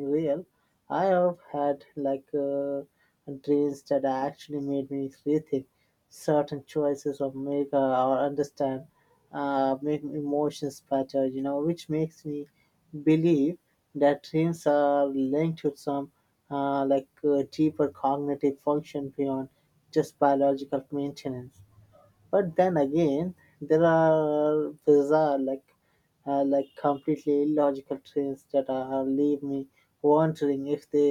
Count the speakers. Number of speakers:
one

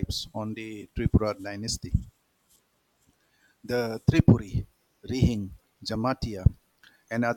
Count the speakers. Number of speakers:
one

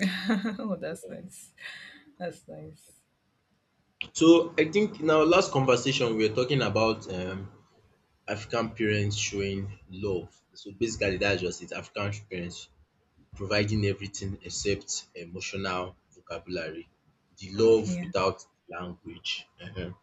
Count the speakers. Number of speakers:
two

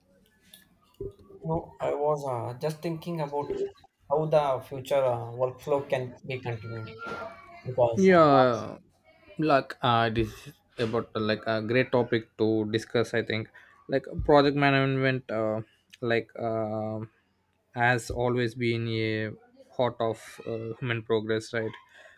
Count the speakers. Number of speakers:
two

